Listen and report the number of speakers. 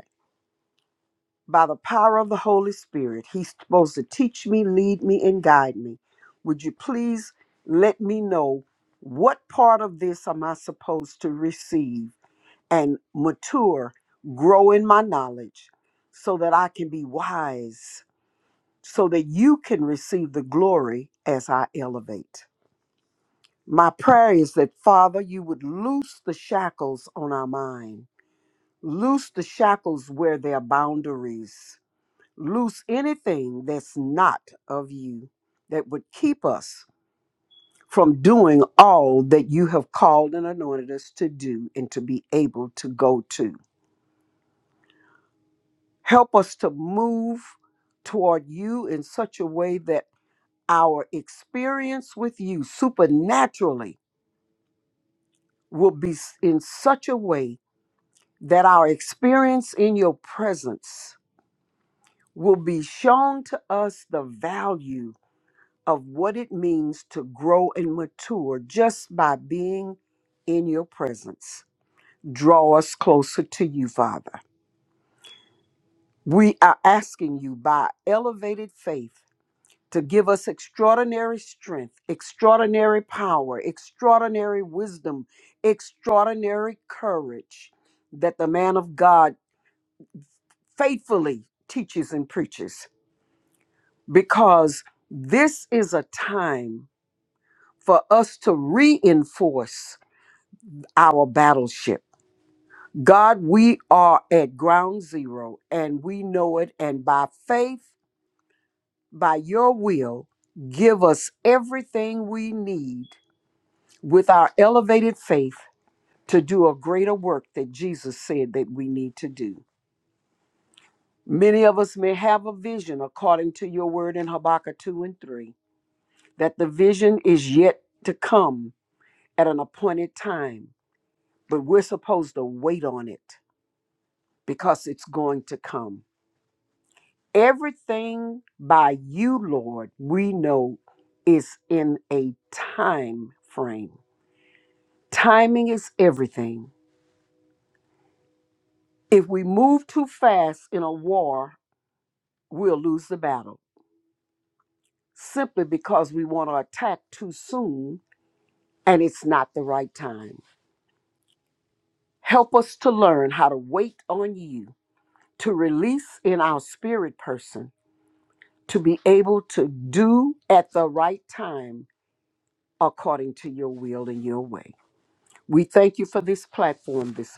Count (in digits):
1